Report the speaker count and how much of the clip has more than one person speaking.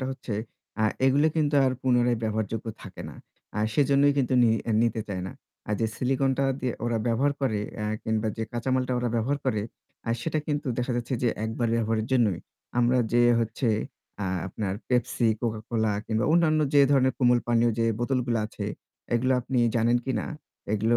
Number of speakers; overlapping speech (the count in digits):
1, no overlap